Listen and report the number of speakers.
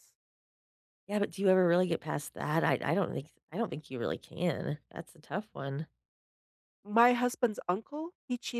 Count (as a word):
two